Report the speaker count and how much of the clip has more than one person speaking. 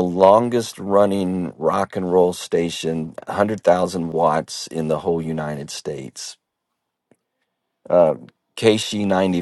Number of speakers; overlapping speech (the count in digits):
1, no overlap